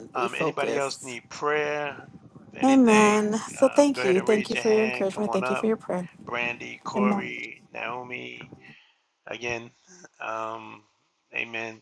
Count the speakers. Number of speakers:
two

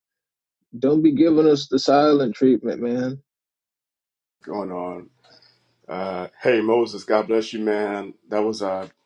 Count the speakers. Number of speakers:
two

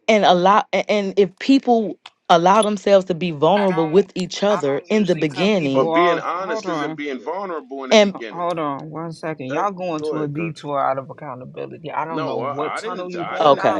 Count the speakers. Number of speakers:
three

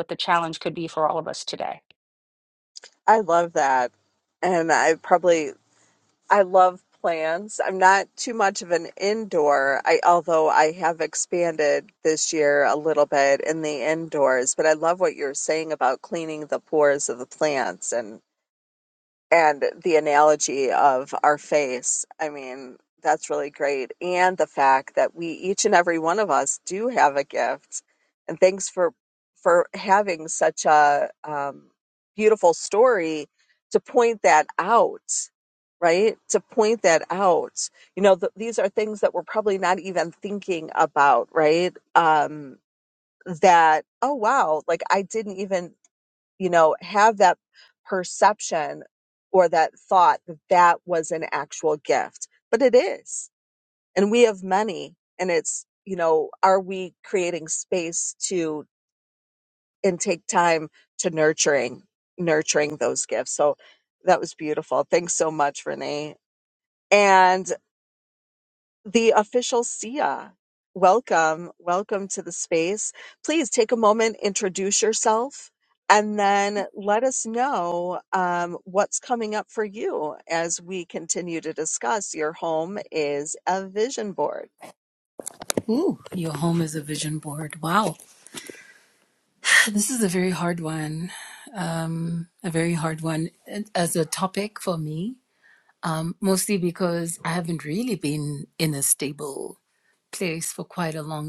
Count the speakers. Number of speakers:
three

